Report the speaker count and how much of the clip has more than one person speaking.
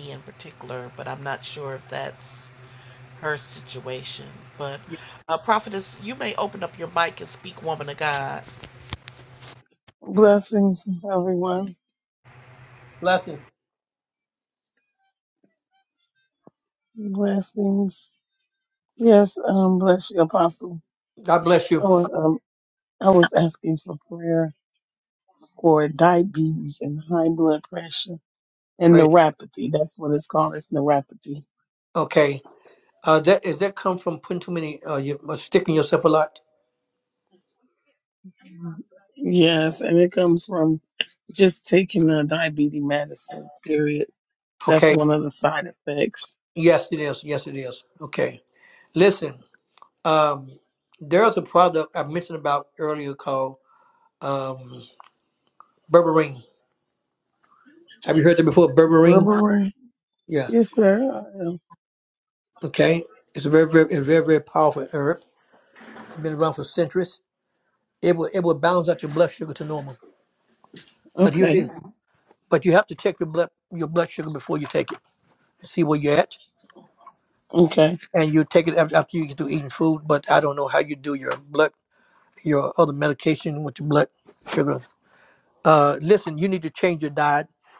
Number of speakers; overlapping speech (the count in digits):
3, about 2%